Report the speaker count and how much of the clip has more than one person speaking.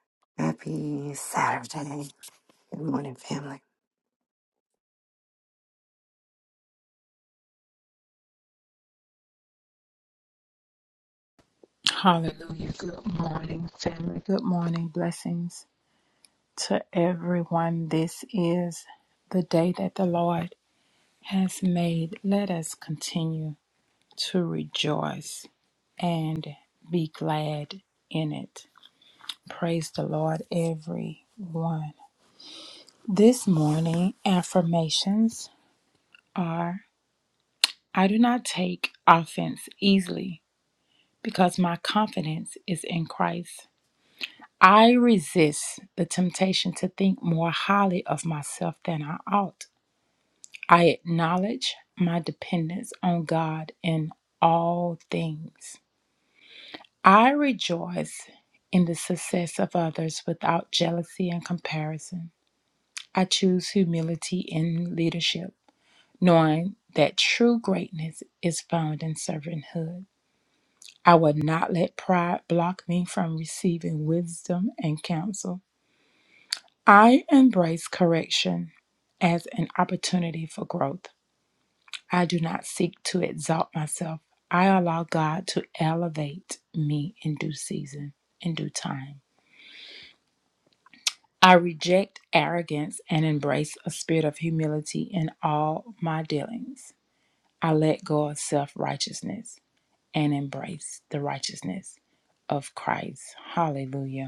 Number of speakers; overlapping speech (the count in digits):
2, no overlap